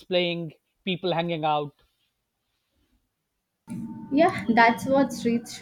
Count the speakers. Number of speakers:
two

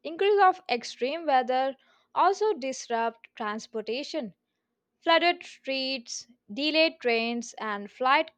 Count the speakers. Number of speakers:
one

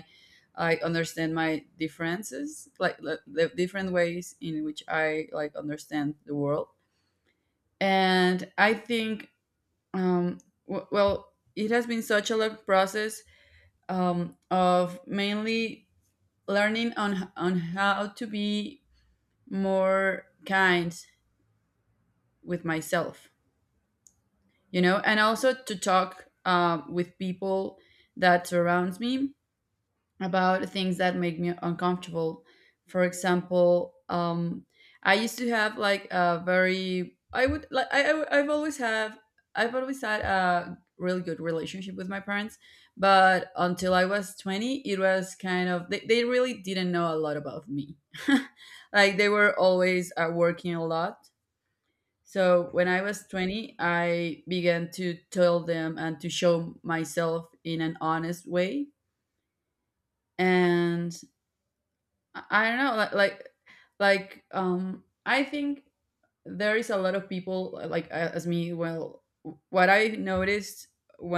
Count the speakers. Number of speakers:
one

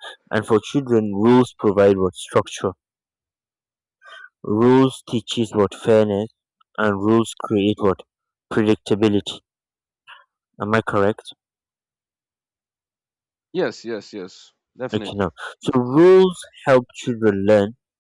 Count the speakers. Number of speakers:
two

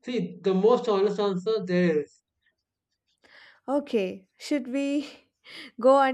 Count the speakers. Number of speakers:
two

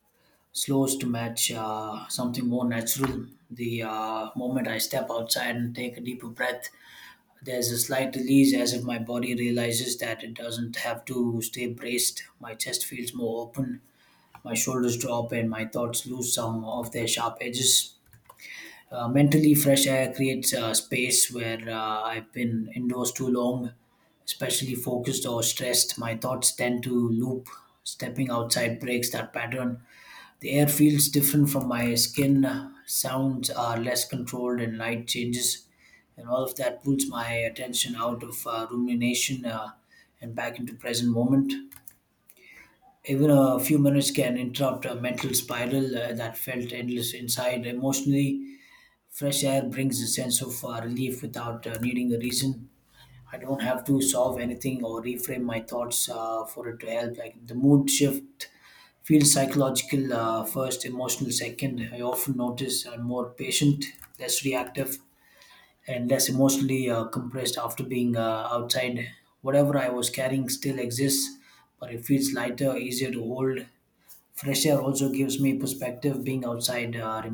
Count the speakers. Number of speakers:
one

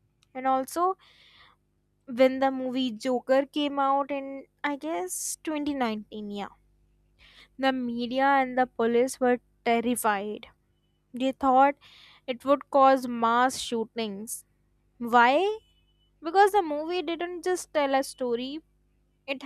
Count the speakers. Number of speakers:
one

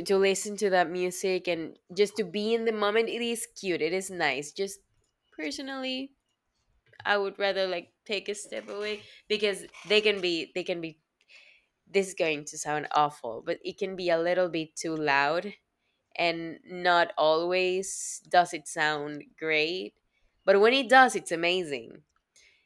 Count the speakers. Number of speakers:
one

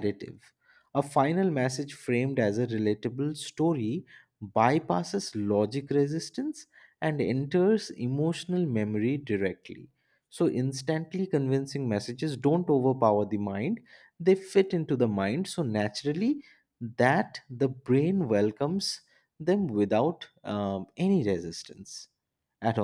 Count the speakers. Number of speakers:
one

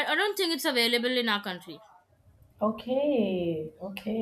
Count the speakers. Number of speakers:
two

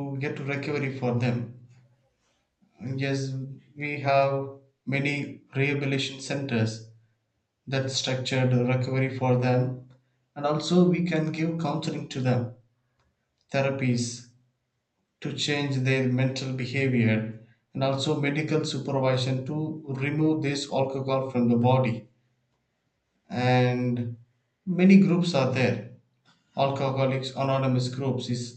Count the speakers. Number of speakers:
one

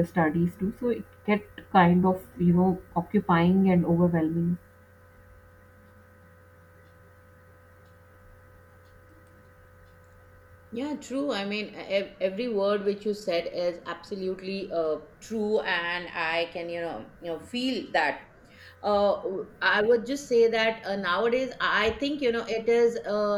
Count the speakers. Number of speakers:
two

